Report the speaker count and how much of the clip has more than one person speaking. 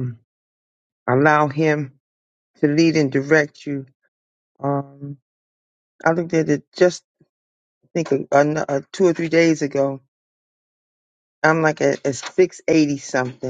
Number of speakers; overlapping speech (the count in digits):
1, no overlap